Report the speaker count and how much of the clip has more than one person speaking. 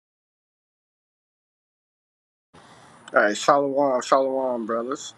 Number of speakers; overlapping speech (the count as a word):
one, no overlap